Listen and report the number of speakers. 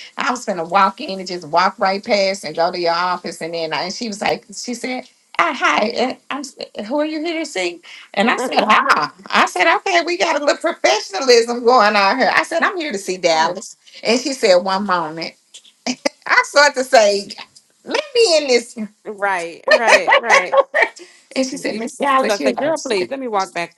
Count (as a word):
two